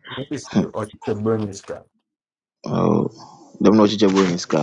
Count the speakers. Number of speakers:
2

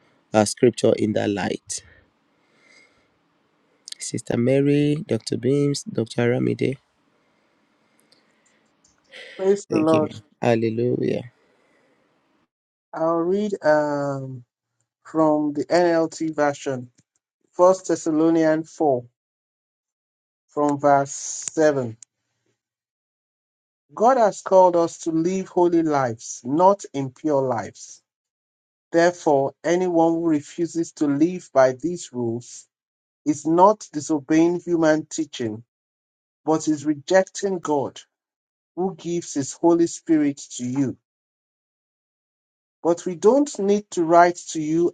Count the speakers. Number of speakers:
2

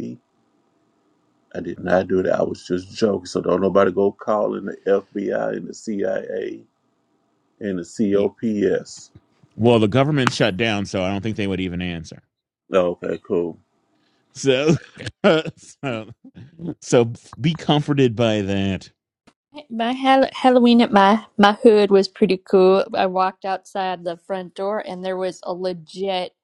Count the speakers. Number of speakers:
3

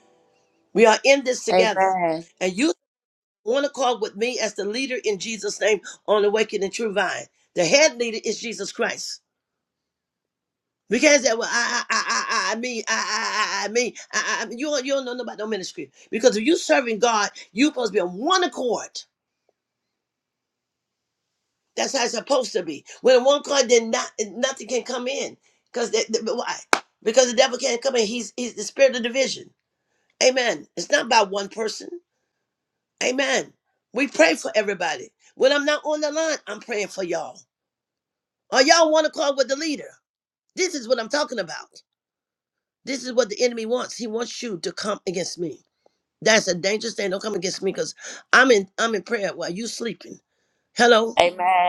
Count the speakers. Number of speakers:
2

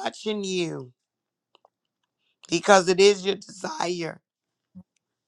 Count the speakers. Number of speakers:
1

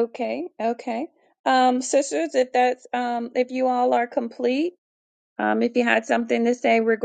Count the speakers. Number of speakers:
1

